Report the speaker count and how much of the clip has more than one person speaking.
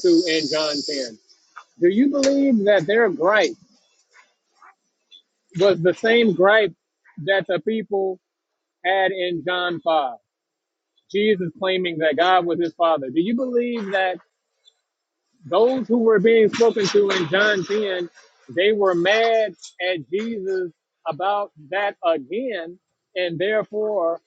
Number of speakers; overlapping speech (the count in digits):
1, no overlap